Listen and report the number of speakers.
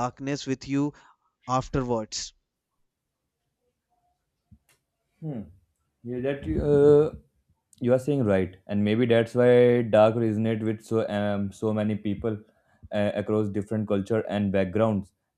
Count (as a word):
two